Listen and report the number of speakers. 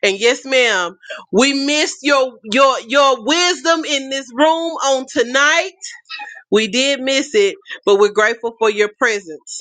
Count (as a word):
one